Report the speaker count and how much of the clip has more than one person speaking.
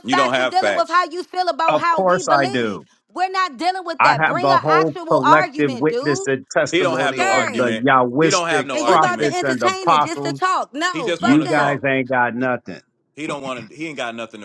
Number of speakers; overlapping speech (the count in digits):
3, about 58%